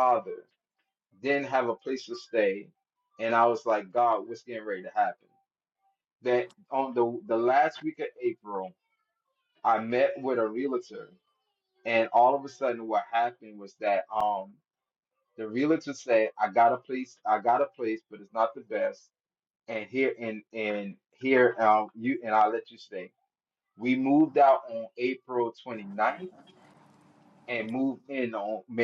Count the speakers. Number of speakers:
one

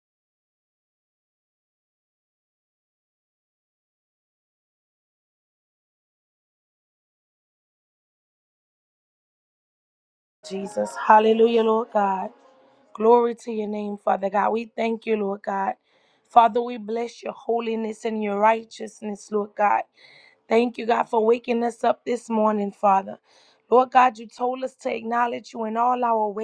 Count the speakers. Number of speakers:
one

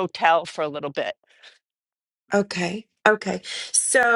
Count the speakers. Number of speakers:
two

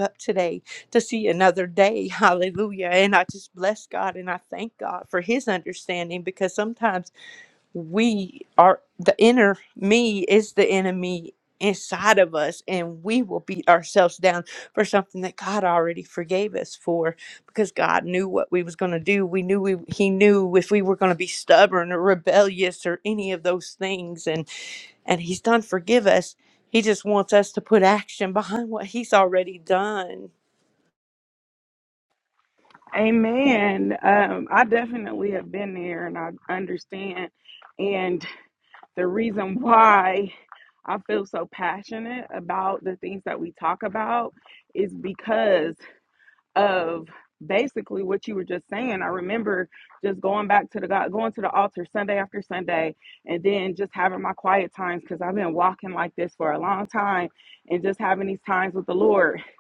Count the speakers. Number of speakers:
two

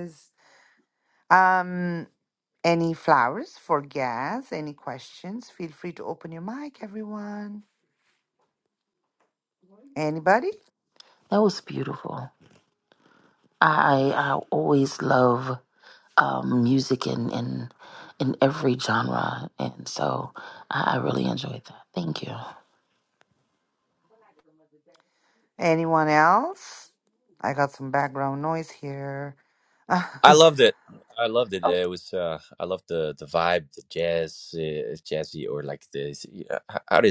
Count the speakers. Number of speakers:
three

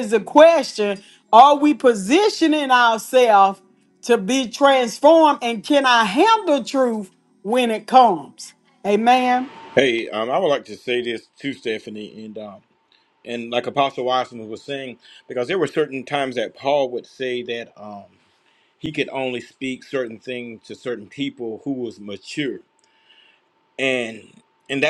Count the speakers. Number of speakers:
two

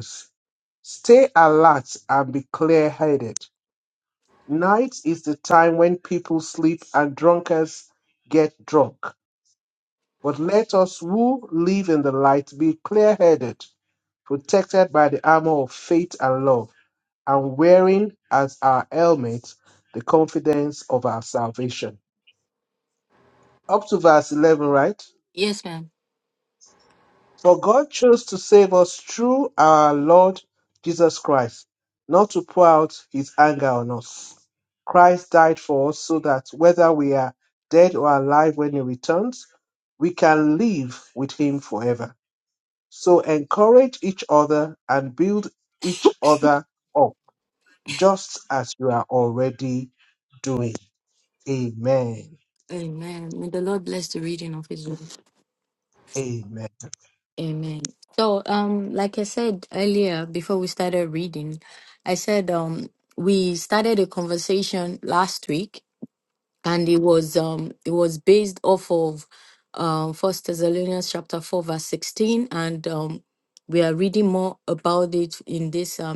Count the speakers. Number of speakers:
two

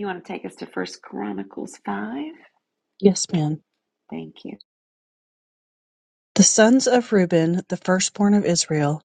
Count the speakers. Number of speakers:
two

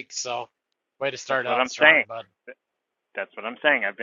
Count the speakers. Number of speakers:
two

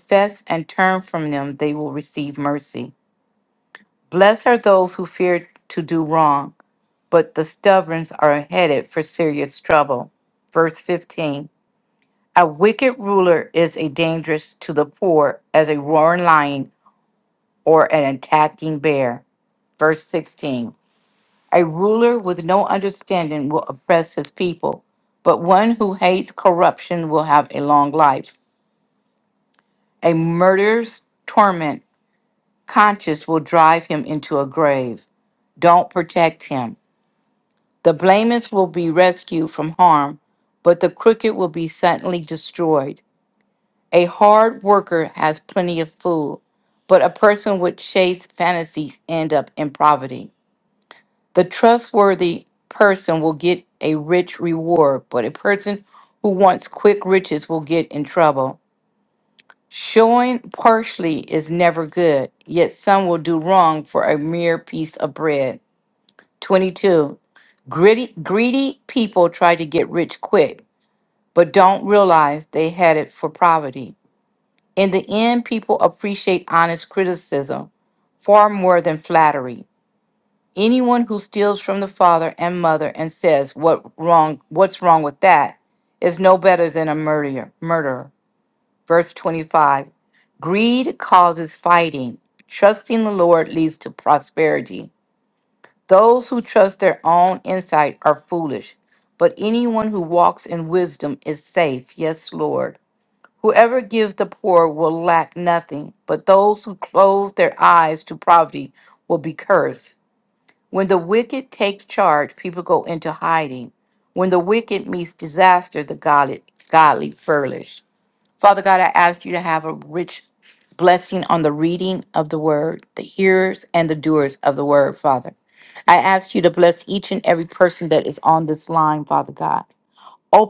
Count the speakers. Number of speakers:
one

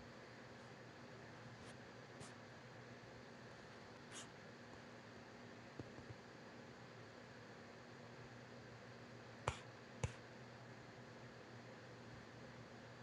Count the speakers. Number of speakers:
zero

